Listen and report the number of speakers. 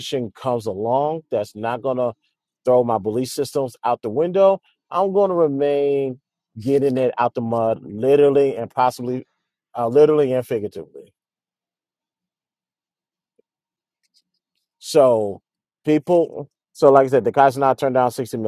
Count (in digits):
1